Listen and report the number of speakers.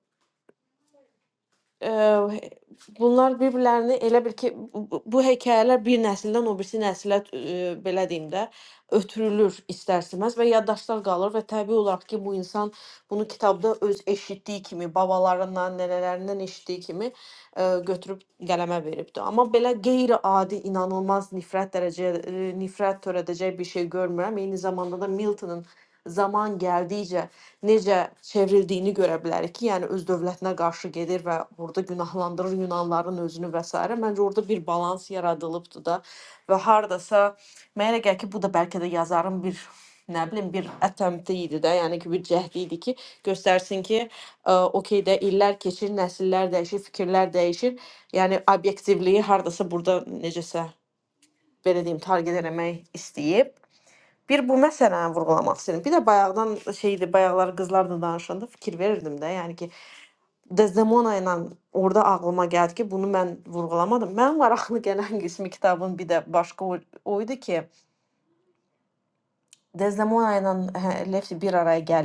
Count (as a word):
one